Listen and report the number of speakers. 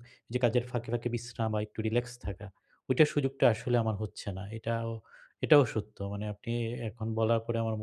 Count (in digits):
1